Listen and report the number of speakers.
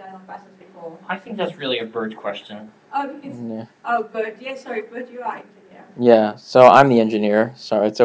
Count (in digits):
3